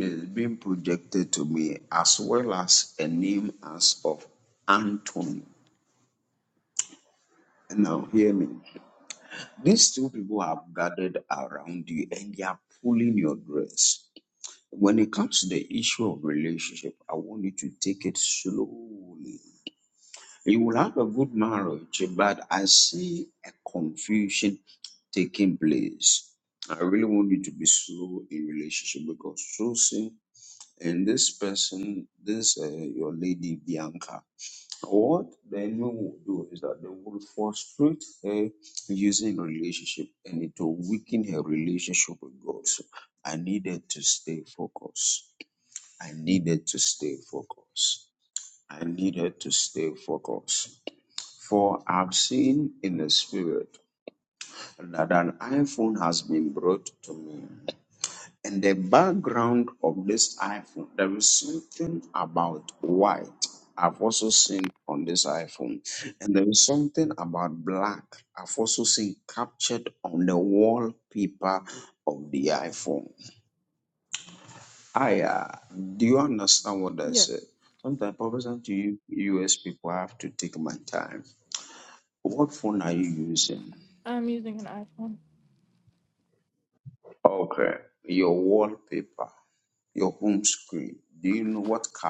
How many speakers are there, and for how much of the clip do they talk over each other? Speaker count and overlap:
2, under 1%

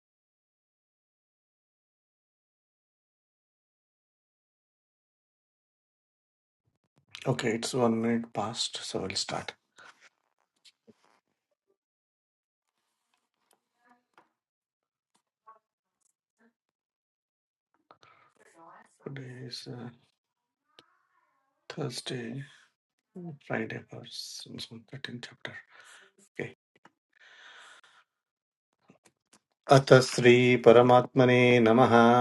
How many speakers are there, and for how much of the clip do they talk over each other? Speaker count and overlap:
1, no overlap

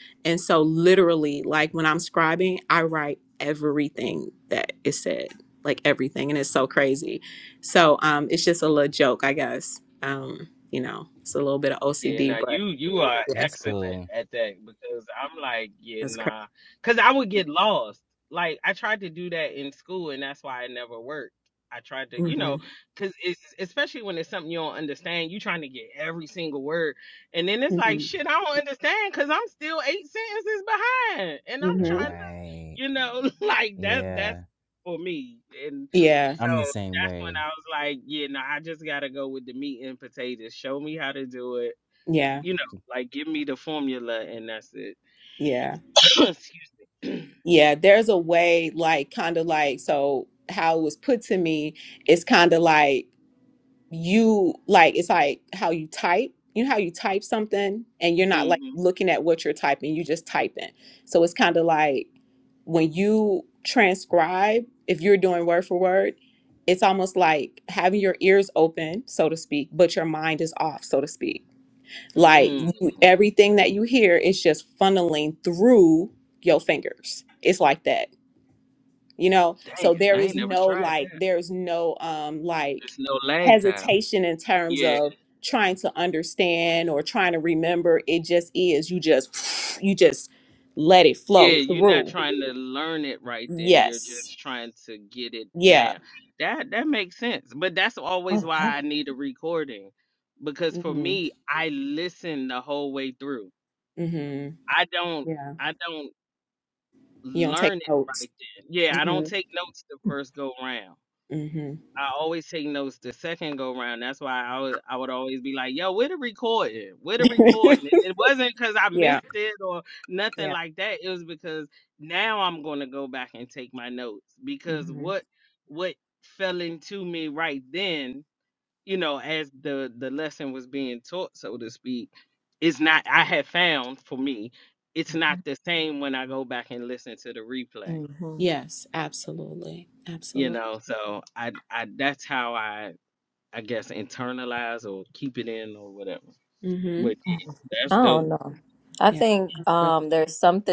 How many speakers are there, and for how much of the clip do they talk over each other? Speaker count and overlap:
4, about 9%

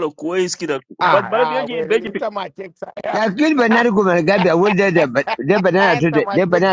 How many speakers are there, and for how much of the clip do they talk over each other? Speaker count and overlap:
3, about 32%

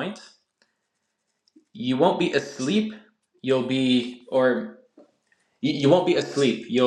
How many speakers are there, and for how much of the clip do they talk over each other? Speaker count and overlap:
1, no overlap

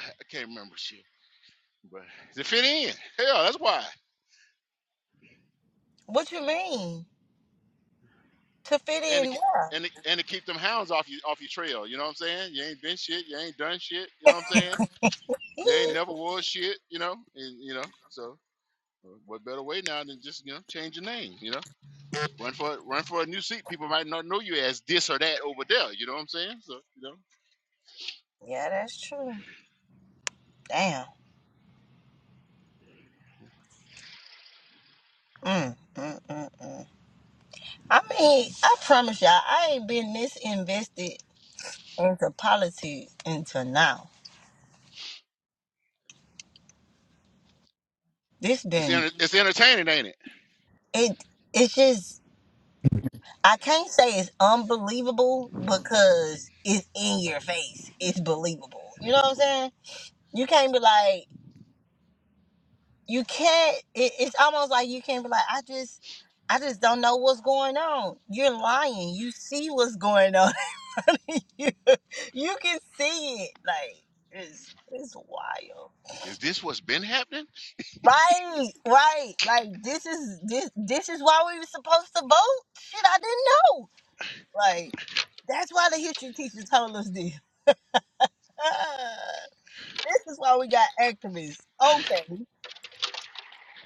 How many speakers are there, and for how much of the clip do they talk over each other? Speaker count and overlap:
2, about 1%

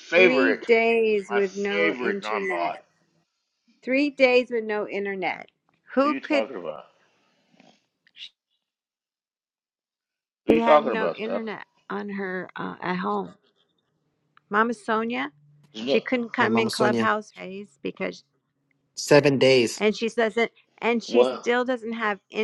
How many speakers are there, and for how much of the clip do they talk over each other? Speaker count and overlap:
3, about 21%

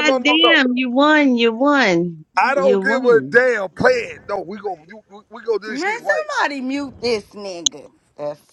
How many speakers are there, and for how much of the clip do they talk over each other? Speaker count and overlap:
3, about 19%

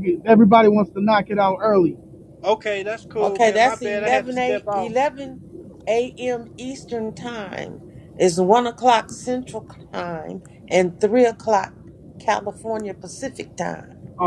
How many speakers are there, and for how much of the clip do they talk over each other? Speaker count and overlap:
3, about 12%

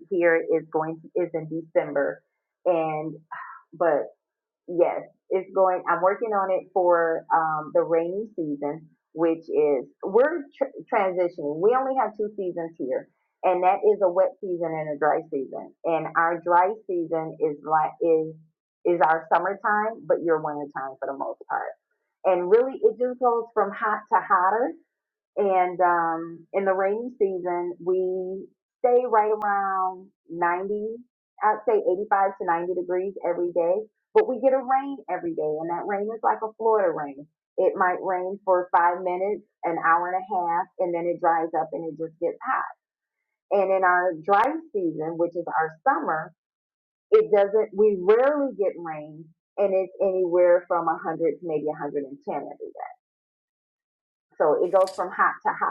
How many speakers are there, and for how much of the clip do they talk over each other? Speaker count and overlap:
1, no overlap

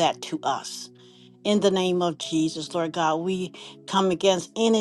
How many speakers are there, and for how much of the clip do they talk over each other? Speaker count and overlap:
1, no overlap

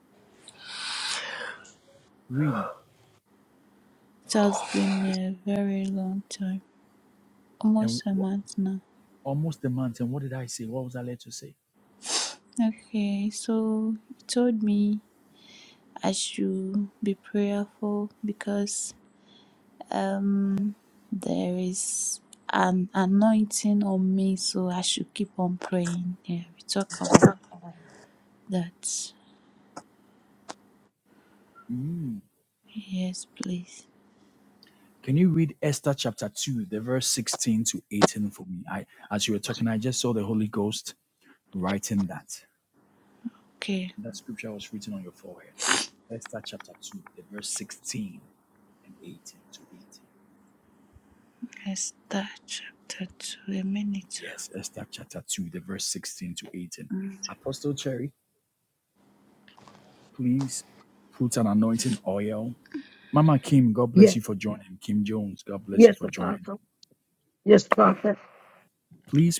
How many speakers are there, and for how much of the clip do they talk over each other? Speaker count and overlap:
3, about 2%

